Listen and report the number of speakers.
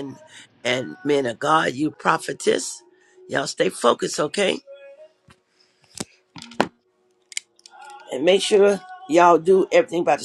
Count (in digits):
1